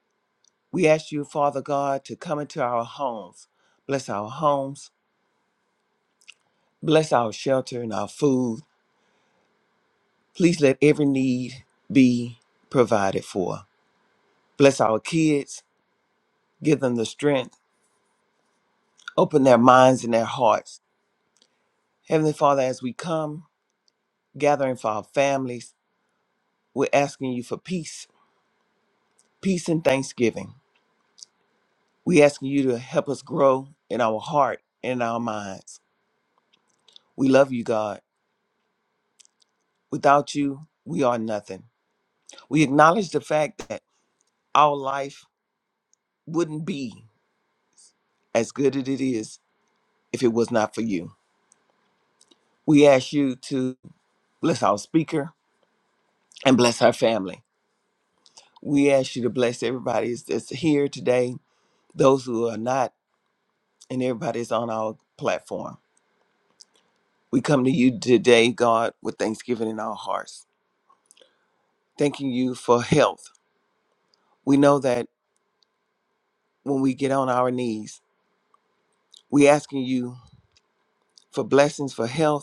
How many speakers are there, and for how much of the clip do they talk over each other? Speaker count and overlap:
one, no overlap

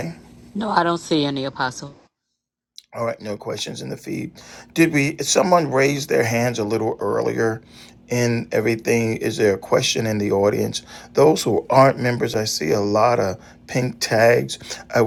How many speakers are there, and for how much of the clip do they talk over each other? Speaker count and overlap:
two, no overlap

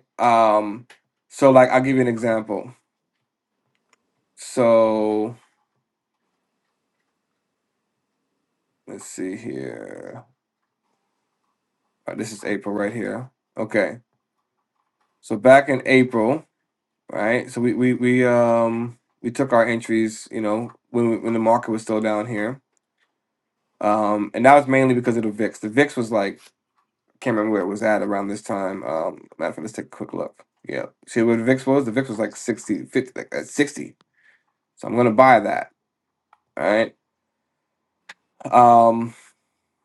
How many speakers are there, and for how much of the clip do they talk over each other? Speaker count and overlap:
one, no overlap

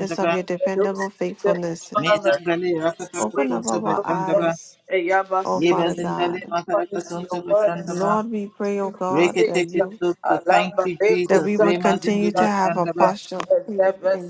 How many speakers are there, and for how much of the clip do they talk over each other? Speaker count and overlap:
three, about 63%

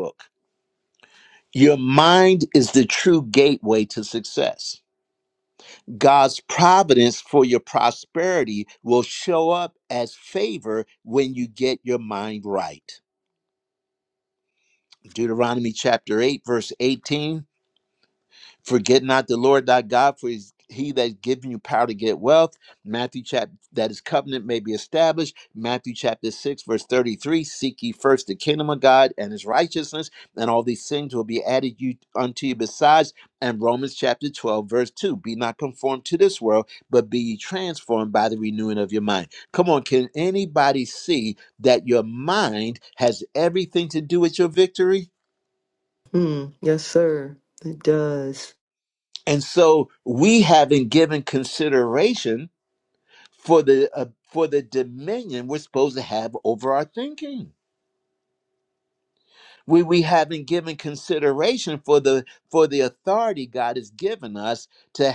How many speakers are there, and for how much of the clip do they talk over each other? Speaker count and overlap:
two, no overlap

